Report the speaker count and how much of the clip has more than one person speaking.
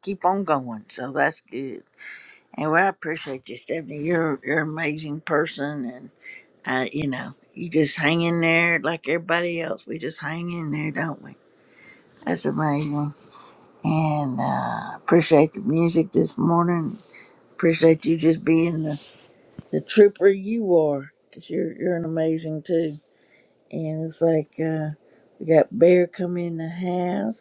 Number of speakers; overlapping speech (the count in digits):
1, no overlap